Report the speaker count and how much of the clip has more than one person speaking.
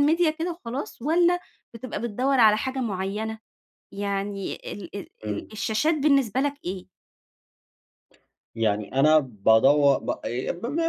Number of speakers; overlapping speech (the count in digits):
2, about 3%